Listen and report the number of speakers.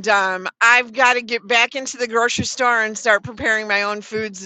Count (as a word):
one